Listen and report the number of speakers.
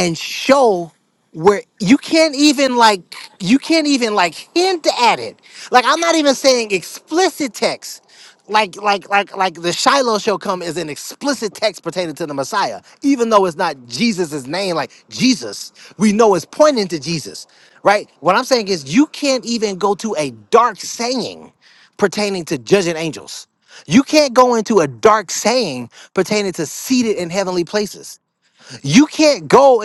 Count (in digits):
1